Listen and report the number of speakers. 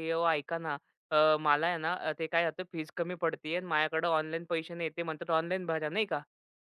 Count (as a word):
one